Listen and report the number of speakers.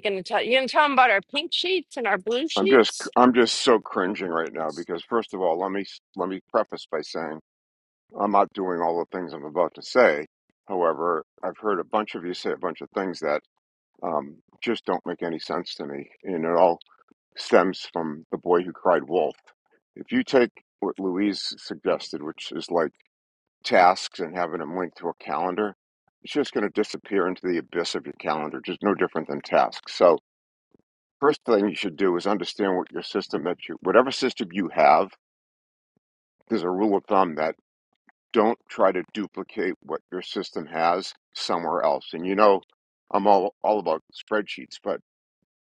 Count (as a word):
two